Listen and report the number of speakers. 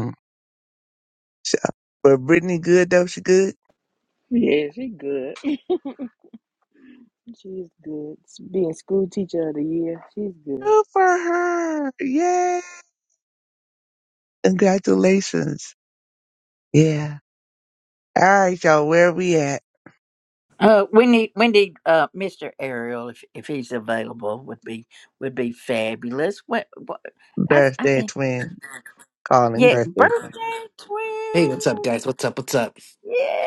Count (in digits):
4